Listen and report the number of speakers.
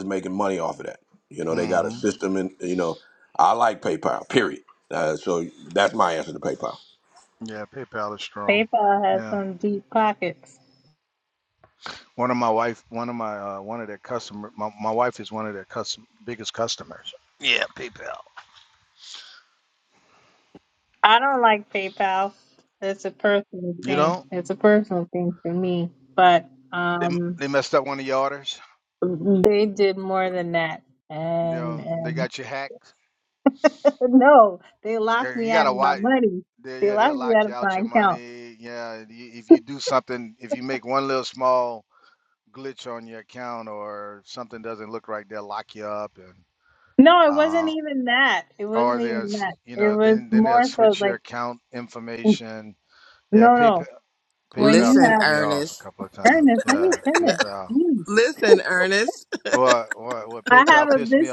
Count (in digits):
4